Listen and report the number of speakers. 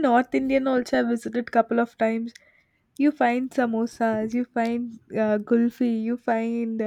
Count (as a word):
one